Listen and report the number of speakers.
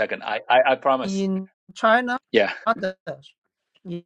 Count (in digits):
2